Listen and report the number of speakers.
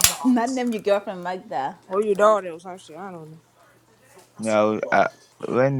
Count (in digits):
3